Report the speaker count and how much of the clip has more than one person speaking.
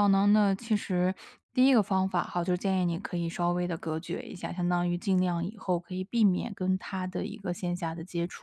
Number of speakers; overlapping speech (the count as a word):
one, no overlap